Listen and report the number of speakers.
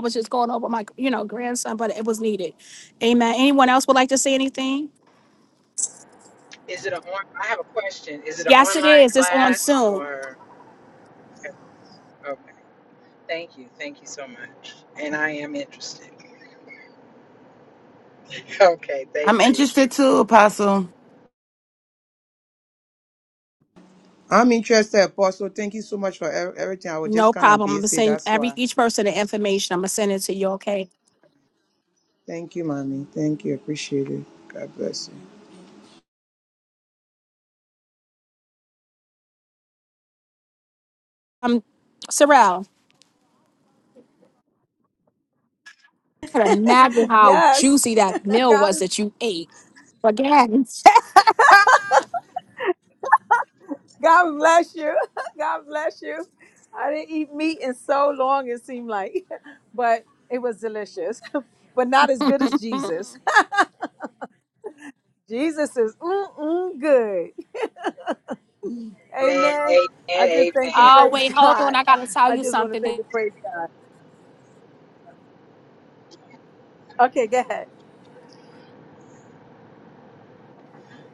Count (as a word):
five